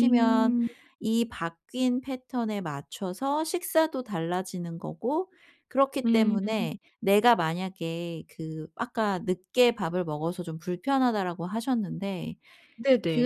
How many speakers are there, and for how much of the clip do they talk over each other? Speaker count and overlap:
2, about 11%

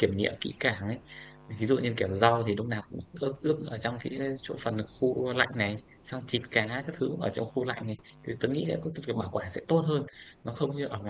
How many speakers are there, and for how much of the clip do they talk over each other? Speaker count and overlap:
1, no overlap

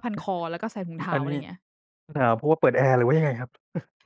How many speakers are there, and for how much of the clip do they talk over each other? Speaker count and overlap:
2, about 7%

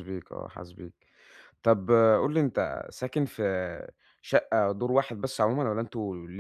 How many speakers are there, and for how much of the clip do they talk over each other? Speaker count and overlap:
1, no overlap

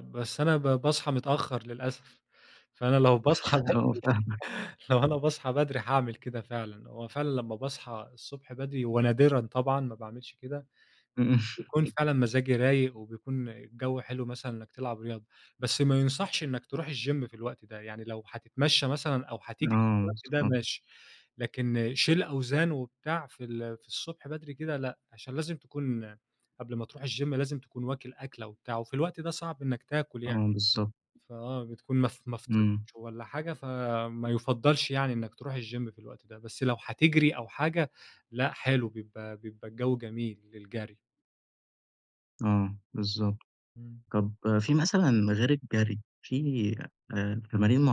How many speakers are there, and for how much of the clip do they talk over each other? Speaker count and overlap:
2, about 3%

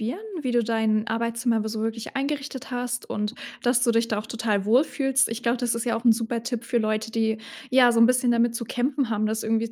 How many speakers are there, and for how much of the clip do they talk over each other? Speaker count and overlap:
1, no overlap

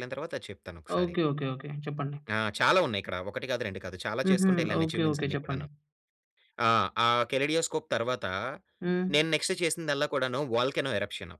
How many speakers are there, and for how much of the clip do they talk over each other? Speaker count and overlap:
2, about 14%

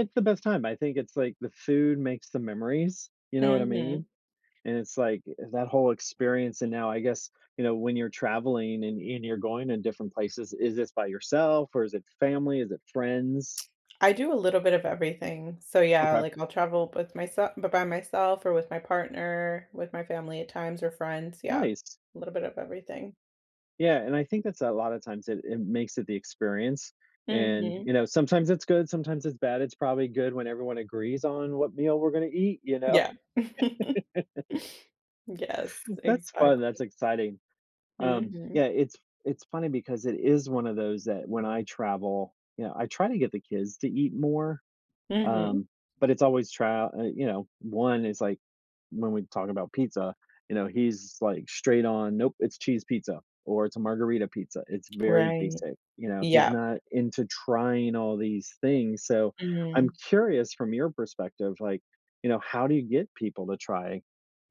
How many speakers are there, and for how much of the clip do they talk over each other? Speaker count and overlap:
2, about 7%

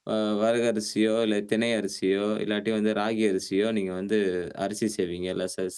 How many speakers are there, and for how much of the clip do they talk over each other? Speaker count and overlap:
1, no overlap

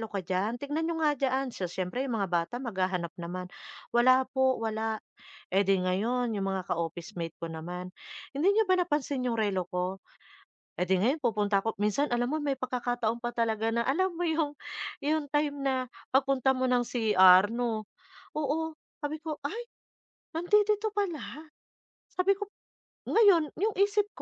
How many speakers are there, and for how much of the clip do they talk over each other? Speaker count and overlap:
1, no overlap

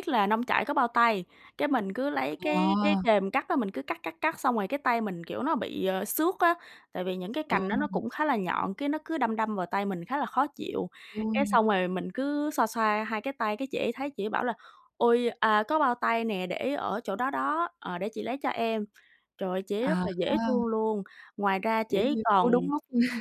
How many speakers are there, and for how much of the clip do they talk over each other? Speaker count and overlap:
2, about 12%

